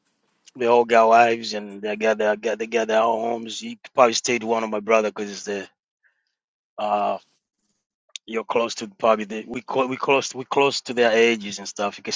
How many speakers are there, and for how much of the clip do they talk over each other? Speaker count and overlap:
1, no overlap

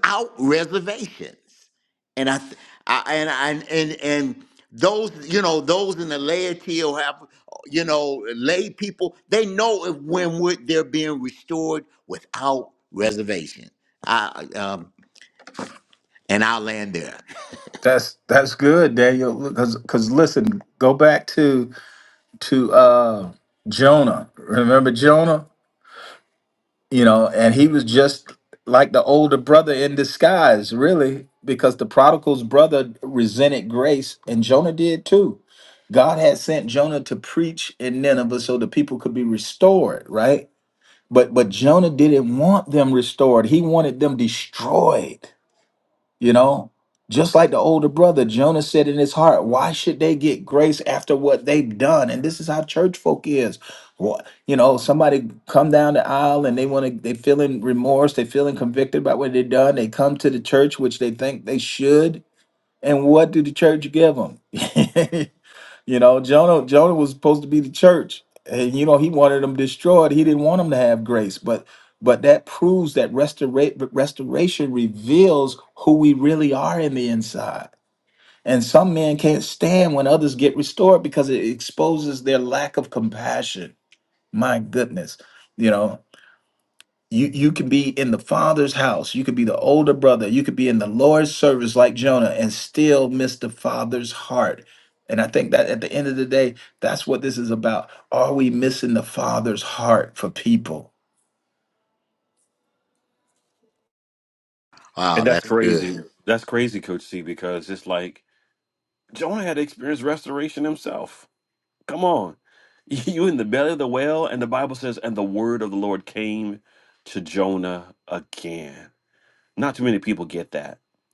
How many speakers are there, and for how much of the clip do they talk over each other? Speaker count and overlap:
3, about 1%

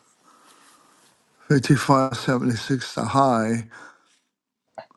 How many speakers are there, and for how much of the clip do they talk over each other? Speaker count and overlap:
1, no overlap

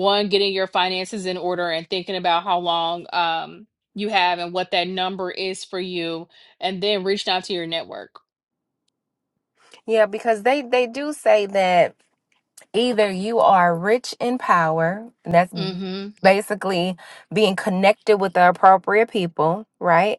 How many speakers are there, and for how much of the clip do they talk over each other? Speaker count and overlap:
2, under 1%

